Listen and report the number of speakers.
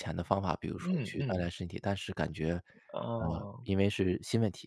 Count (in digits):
2